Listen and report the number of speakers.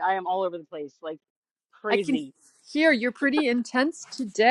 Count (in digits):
2